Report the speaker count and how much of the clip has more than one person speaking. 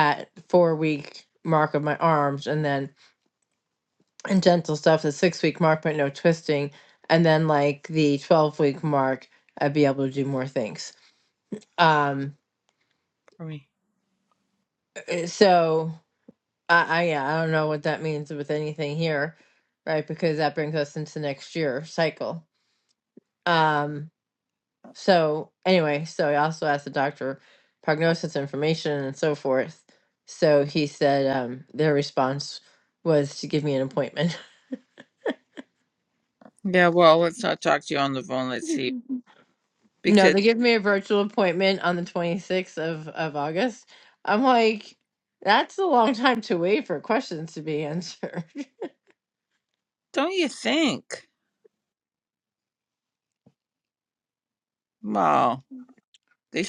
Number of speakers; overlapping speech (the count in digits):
2, under 1%